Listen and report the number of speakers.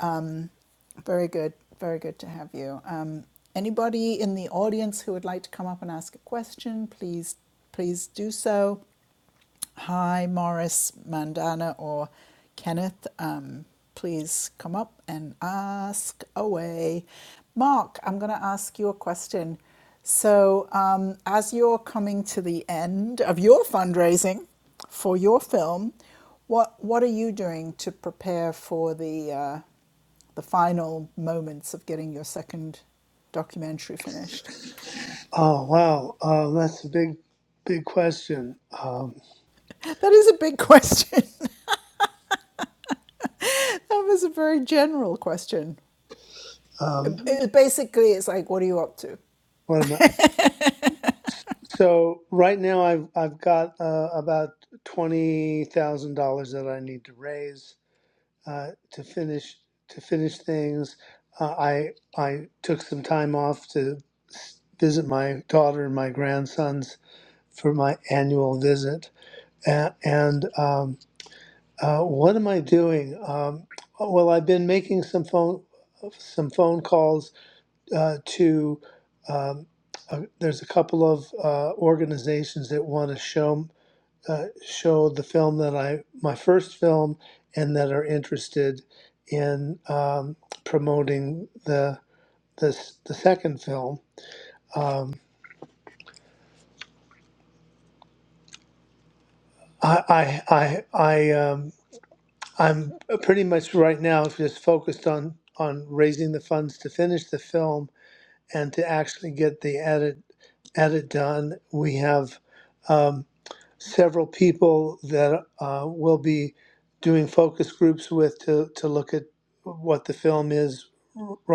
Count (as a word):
two